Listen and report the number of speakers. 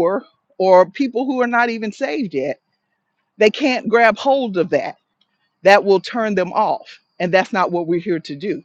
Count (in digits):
1